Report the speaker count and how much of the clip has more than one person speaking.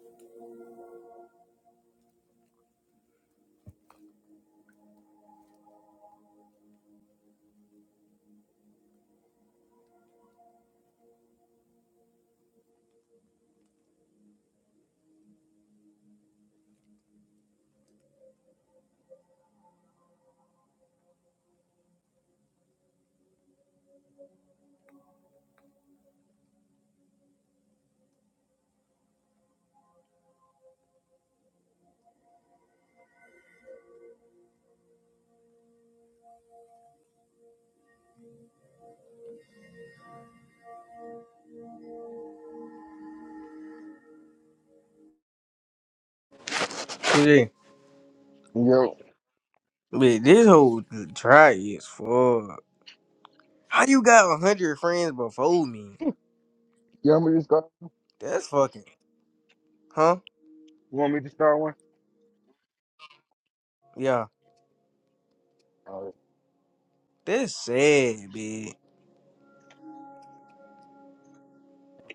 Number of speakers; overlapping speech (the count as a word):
two, no overlap